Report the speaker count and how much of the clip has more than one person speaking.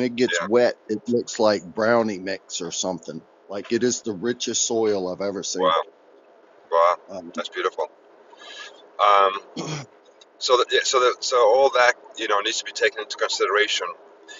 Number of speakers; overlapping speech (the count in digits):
2, about 3%